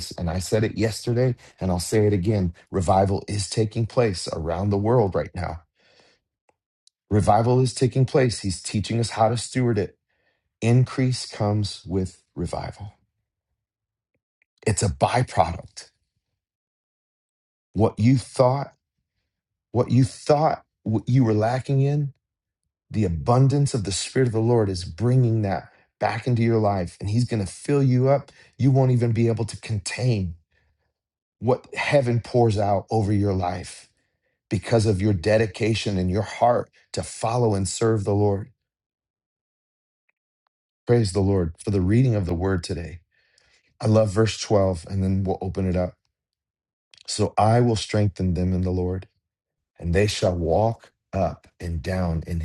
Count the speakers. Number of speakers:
one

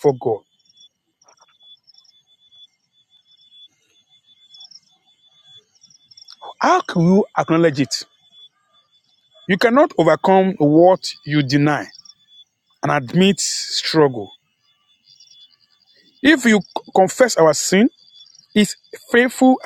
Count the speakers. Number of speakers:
one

